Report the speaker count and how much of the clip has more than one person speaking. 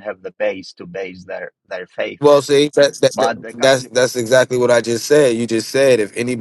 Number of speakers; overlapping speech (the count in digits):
2, about 5%